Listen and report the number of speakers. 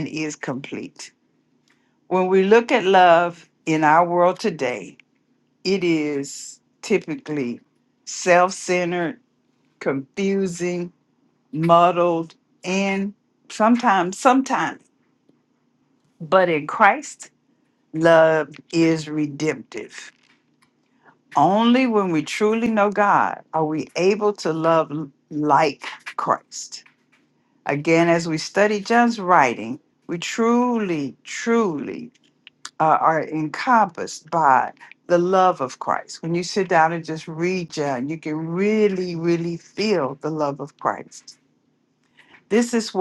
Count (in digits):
1